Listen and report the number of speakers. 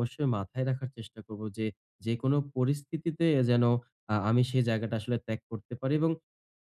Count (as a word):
one